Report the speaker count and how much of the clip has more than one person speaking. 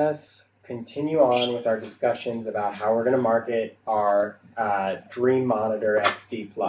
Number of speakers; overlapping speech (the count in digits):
1, no overlap